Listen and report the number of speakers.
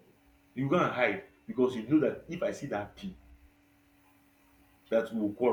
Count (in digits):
1